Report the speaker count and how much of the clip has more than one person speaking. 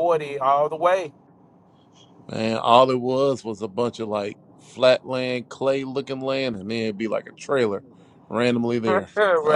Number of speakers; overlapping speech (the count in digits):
2, about 1%